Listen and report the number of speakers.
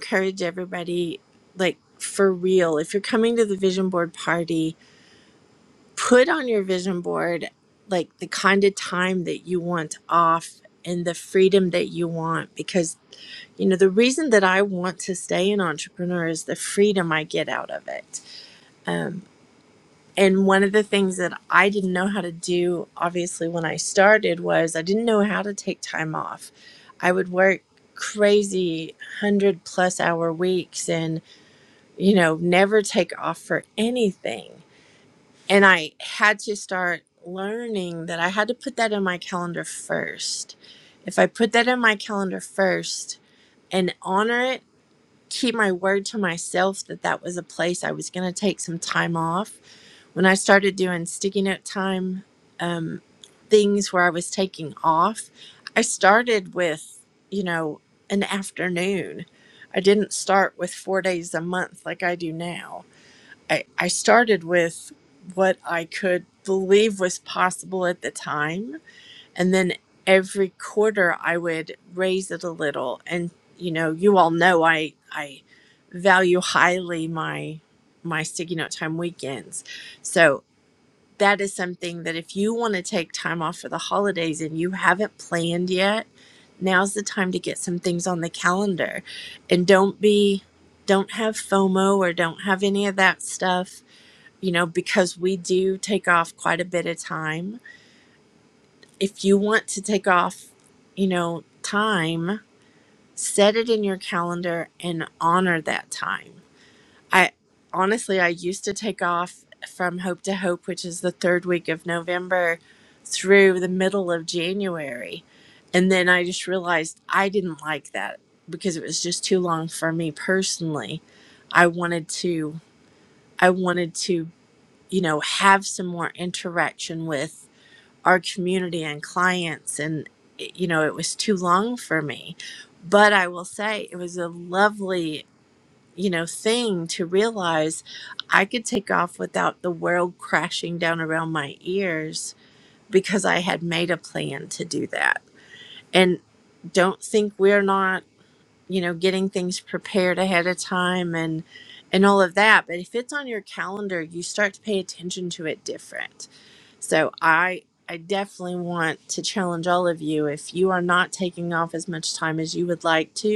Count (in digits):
1